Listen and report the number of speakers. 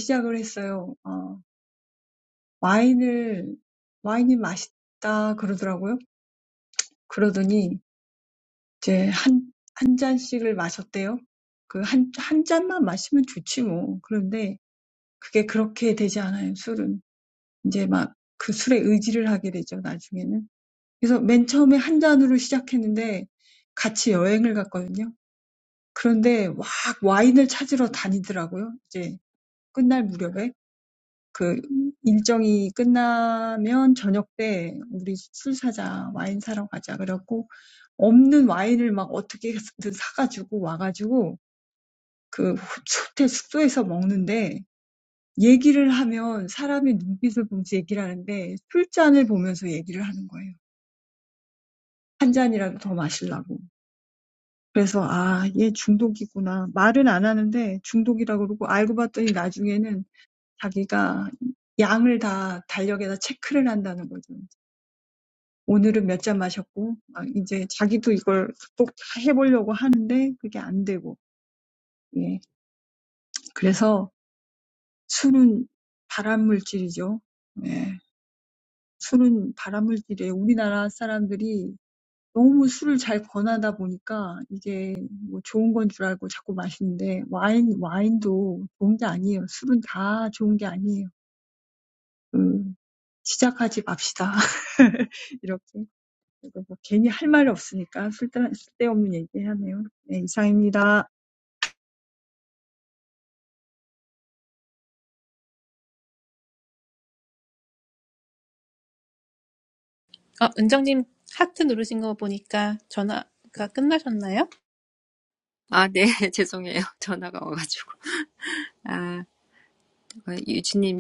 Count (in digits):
3